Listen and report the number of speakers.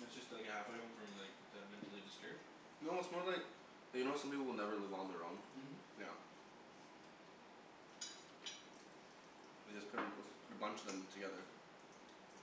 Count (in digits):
2